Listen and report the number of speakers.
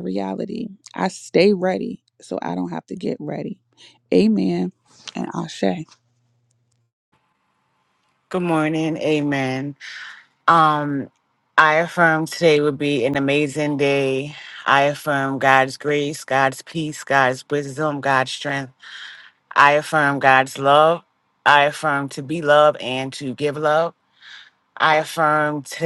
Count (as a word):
two